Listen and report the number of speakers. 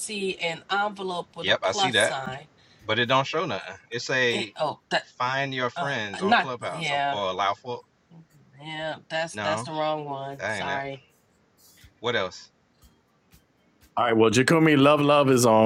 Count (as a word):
three